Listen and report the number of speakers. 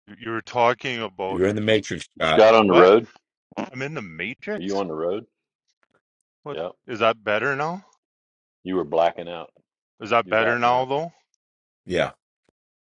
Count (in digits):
3